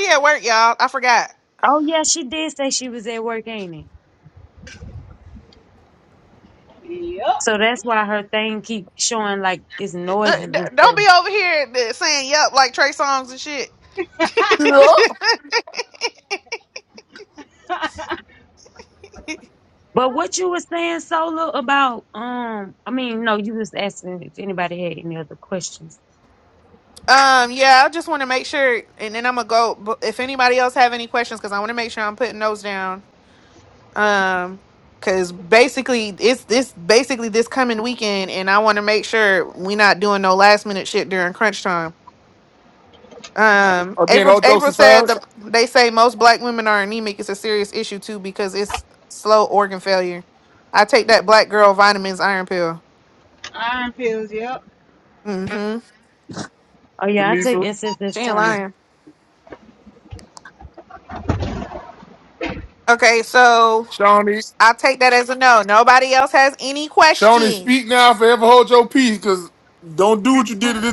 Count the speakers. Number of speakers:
4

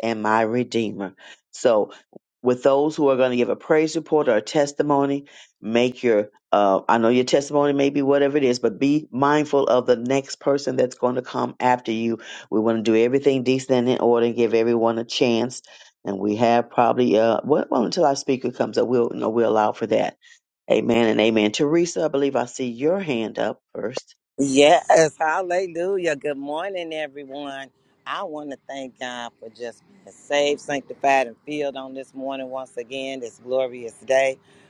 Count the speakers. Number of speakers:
2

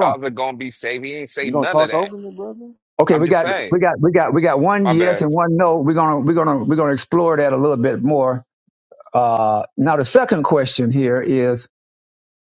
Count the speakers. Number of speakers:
3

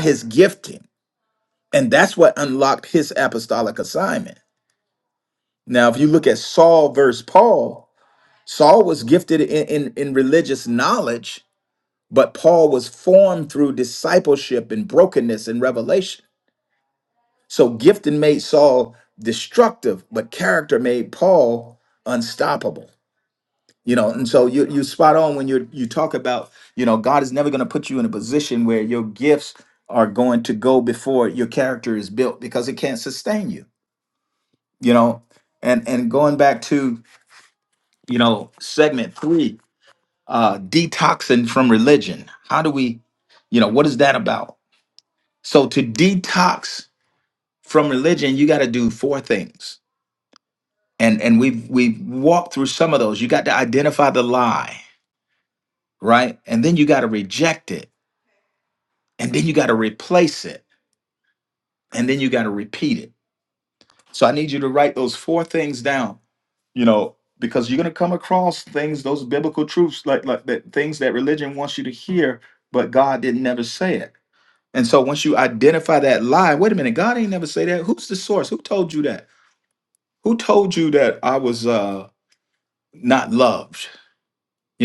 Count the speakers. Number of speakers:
1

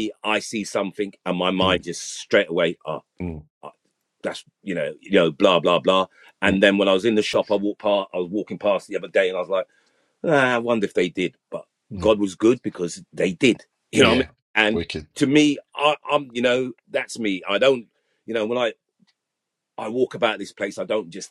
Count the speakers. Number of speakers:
2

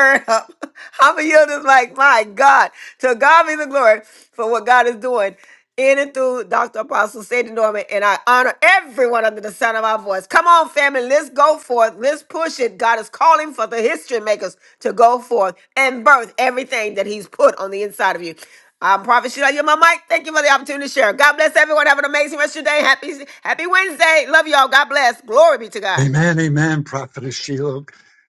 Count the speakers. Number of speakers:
2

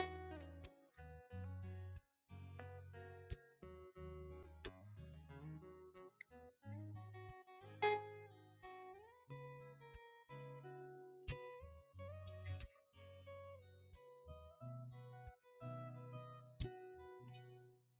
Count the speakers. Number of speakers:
0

